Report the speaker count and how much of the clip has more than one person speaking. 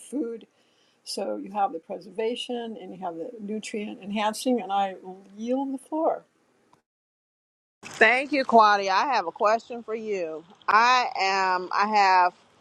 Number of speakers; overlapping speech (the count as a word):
two, no overlap